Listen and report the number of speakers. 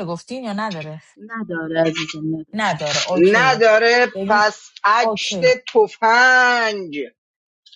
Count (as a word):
three